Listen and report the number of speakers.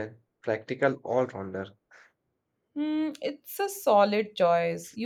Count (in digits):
2